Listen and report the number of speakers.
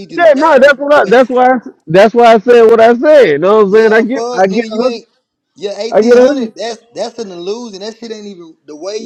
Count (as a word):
two